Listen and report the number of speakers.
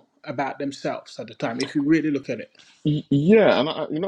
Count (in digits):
2